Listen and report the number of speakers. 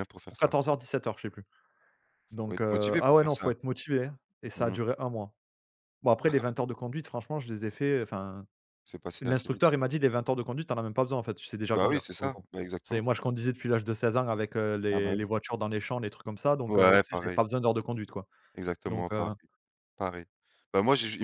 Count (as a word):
two